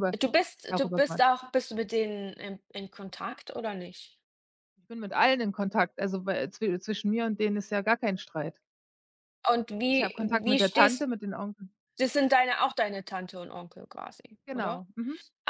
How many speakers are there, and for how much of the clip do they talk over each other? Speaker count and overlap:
2, about 11%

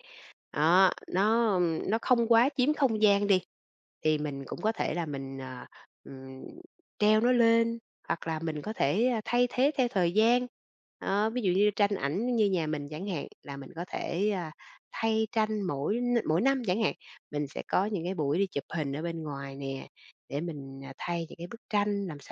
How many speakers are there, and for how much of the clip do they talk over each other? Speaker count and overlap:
1, no overlap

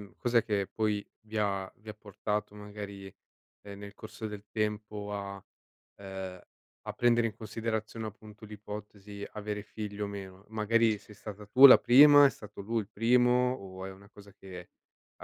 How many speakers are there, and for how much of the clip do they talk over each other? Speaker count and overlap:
1, no overlap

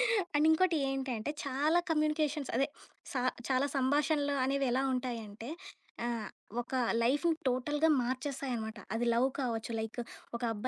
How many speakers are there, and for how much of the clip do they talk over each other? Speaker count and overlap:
1, no overlap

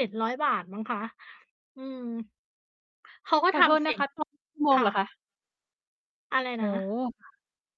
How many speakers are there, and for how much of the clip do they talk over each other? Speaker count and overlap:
2, about 12%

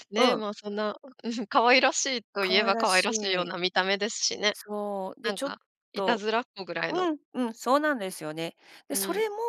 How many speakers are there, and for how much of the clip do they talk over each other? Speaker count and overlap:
2, about 27%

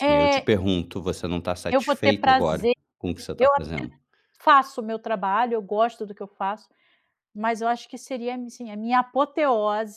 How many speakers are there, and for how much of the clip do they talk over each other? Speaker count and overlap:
2, about 23%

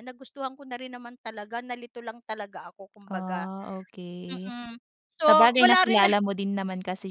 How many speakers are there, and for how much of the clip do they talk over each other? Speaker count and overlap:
2, about 20%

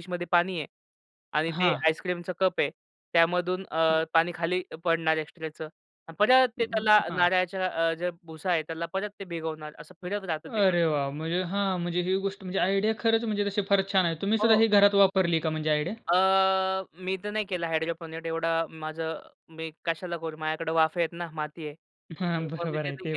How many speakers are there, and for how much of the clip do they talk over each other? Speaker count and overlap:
2, about 11%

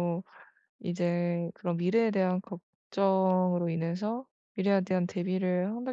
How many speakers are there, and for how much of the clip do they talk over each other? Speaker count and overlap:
1, no overlap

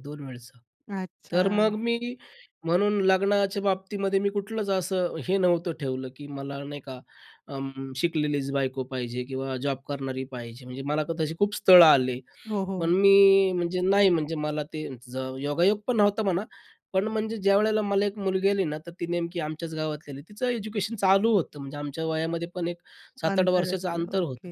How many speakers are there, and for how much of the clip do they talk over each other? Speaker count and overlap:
2, about 7%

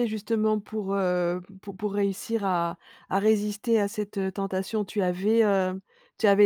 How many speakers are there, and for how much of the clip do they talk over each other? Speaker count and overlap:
1, no overlap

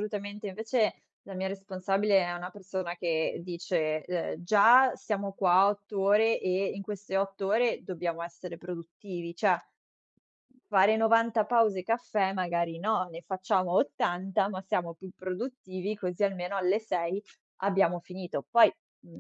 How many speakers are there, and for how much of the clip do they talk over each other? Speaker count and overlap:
1, no overlap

